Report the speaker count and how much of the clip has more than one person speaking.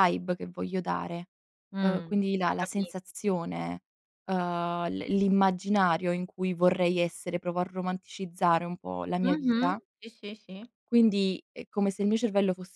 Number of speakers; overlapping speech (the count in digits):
2, about 9%